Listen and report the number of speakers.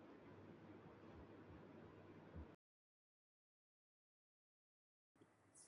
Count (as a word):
zero